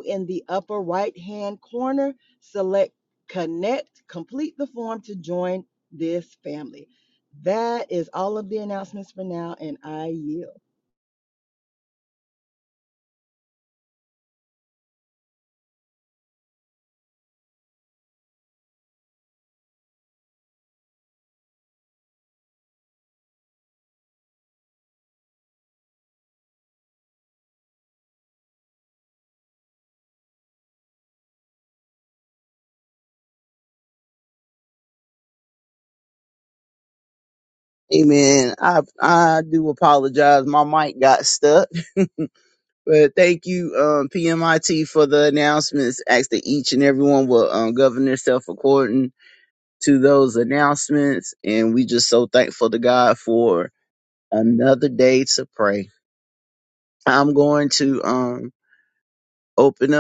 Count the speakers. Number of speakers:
2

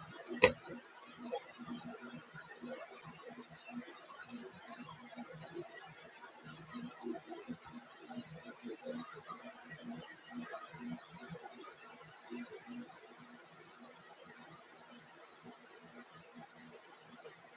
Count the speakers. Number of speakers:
0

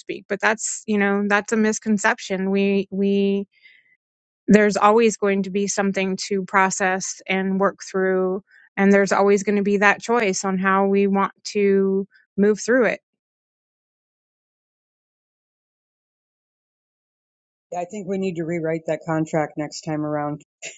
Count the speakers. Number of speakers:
2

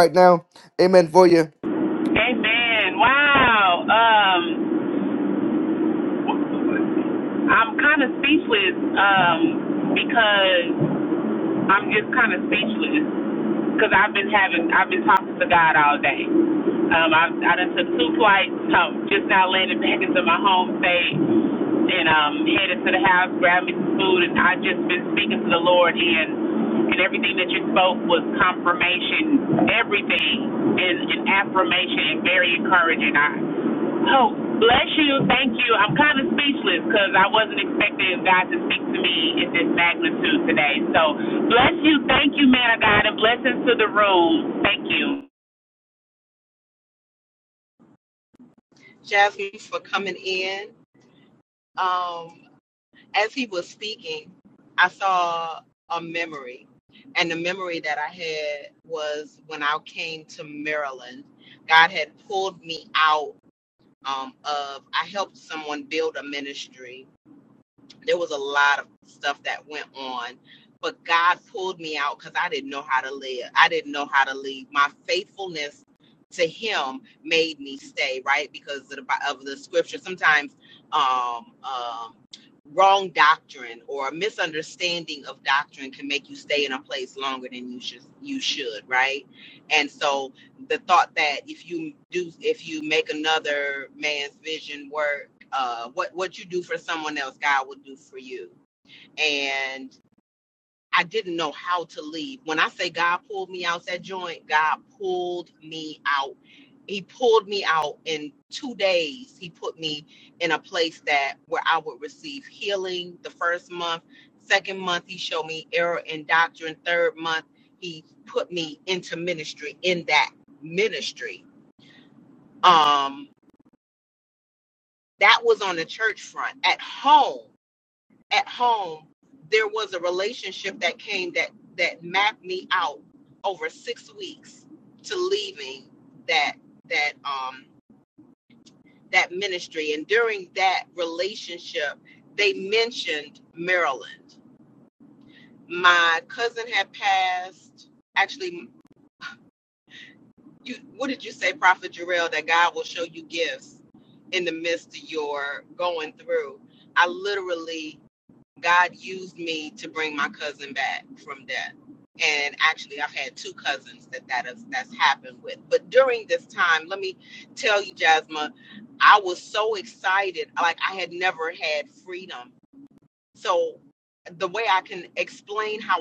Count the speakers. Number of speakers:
3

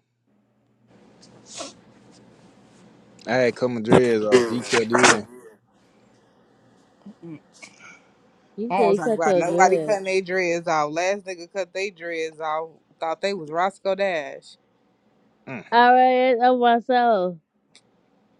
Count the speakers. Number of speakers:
3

